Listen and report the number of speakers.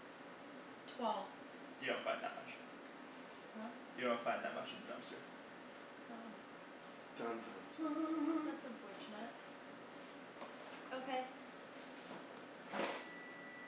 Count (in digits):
3